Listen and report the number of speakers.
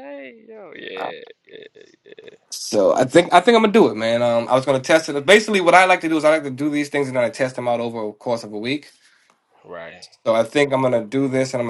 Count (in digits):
2